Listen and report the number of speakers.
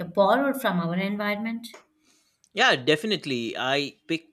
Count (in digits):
2